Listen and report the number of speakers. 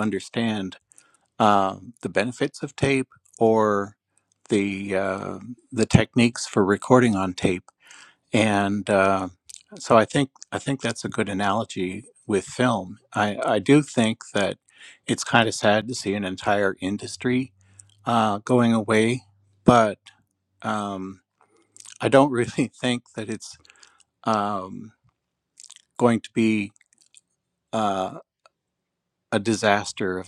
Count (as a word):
one